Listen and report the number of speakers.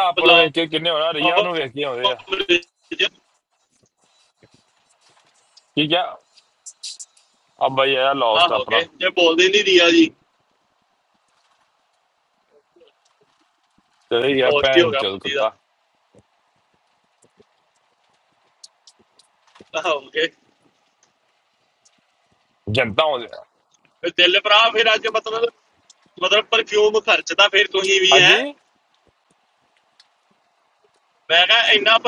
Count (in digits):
2